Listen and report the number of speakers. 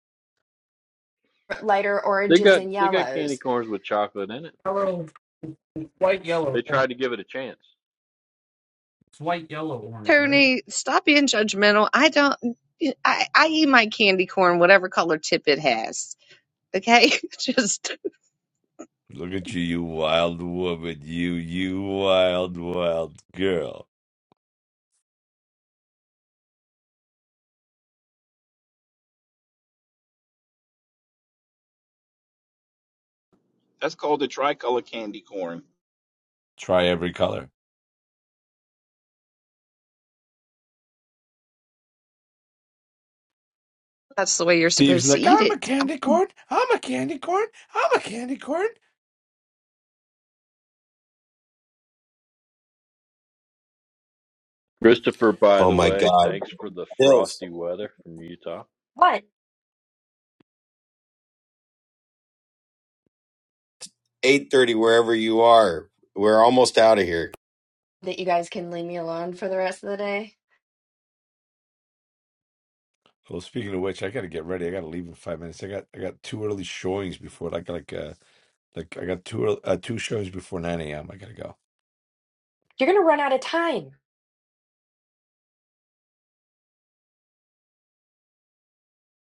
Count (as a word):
seven